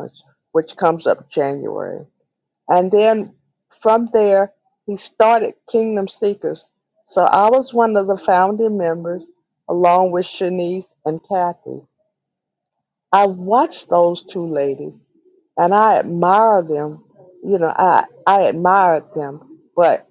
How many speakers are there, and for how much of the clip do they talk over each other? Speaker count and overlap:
1, no overlap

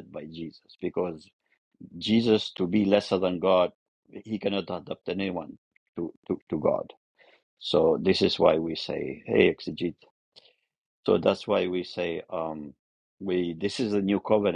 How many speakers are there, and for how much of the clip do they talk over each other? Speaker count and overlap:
1, no overlap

